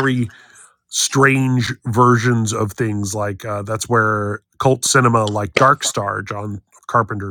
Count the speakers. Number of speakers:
1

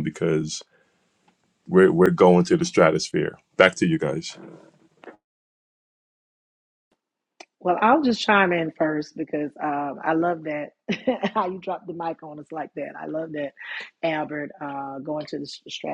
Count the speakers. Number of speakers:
2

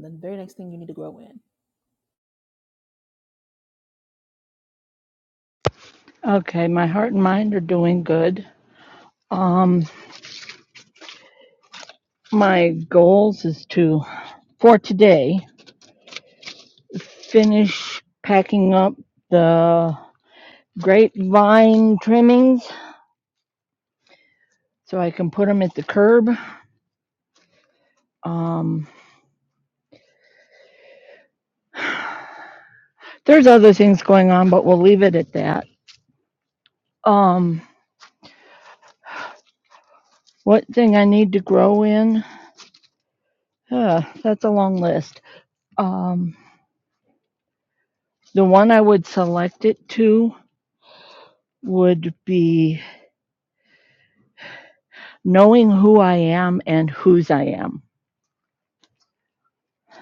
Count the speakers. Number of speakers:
2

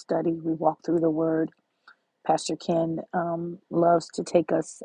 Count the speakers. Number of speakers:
1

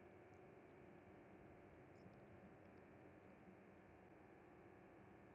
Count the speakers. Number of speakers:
0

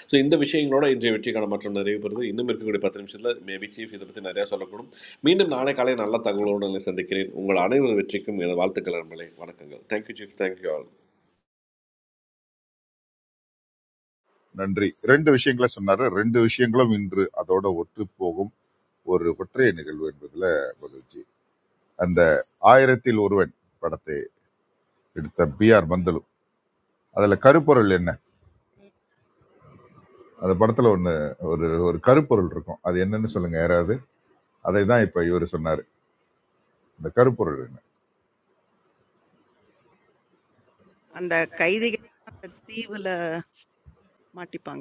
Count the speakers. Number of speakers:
3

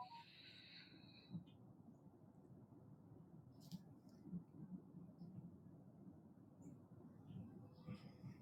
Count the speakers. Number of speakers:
0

